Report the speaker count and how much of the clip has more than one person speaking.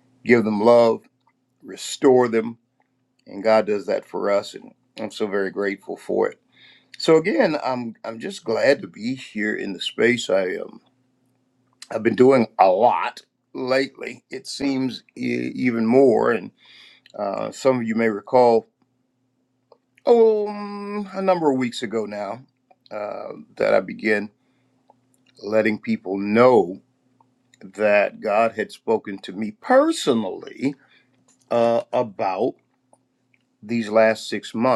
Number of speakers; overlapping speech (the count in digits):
1, no overlap